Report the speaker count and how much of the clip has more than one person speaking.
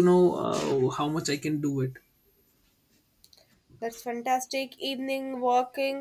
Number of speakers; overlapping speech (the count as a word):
two, no overlap